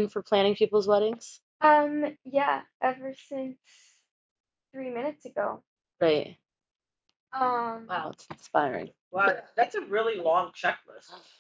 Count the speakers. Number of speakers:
3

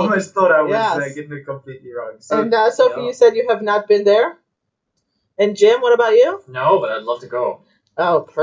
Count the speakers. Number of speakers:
3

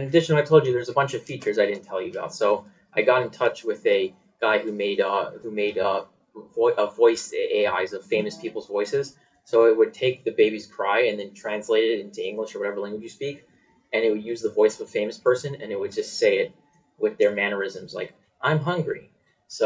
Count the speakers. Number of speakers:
1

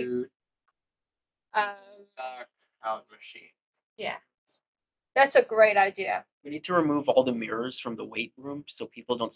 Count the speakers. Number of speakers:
3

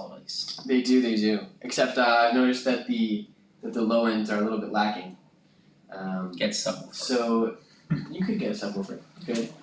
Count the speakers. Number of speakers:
2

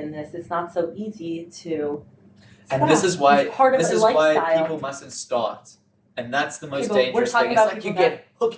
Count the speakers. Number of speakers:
2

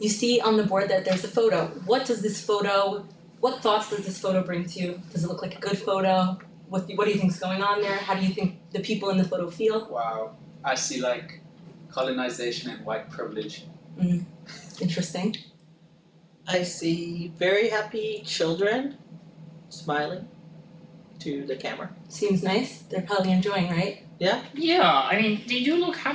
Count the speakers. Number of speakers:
4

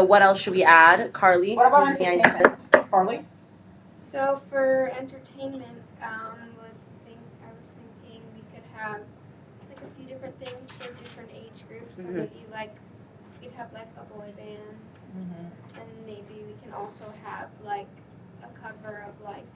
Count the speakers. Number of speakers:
3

